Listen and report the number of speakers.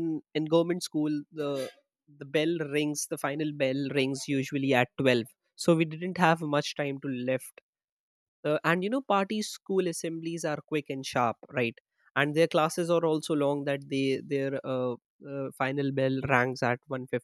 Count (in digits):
1